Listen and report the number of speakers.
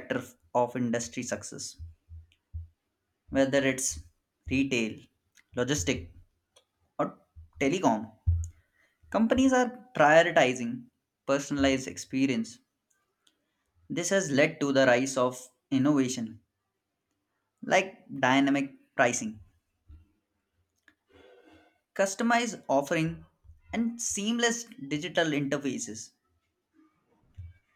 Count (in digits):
1